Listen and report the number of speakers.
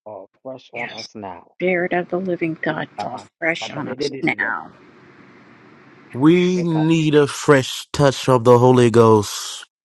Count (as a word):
three